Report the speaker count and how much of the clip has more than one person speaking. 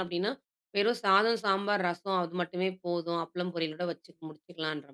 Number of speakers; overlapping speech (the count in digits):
1, no overlap